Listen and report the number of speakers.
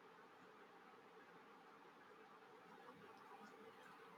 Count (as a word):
zero